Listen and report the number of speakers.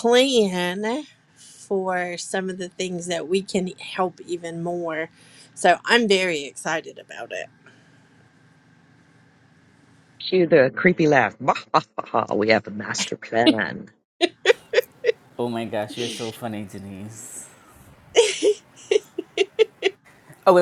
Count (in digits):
3